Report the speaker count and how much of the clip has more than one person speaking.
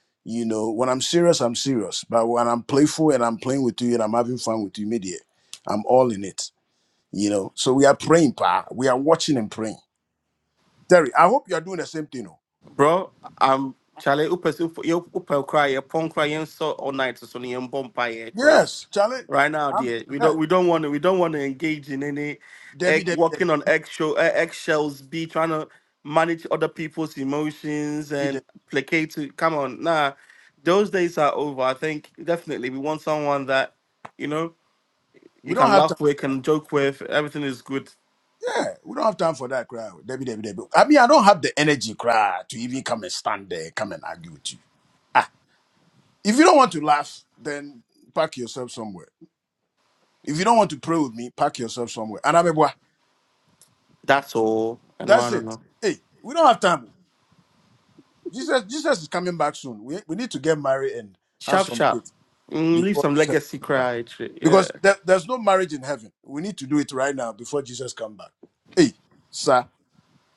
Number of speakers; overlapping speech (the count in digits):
2, about 5%